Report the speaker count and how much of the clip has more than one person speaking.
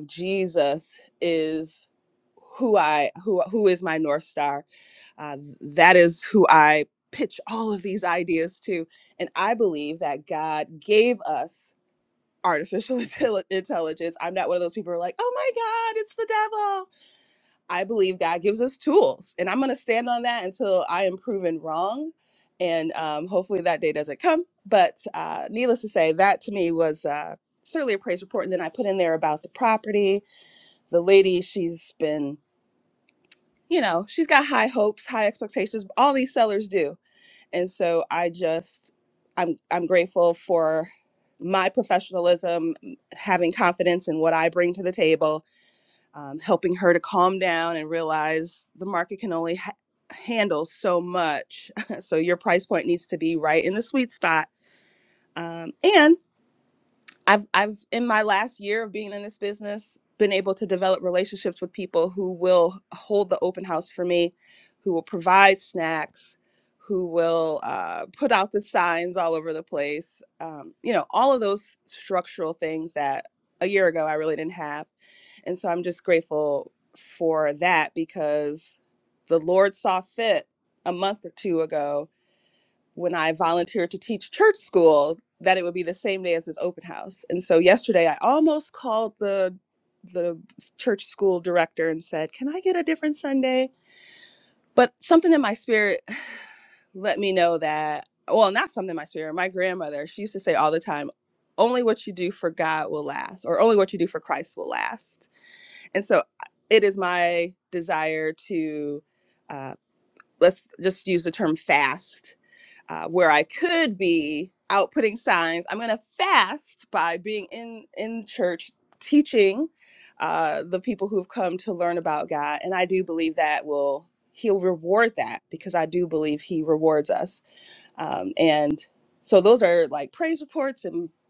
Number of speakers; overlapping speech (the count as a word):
one, no overlap